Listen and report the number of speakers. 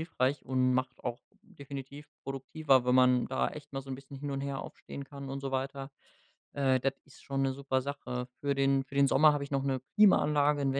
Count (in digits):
1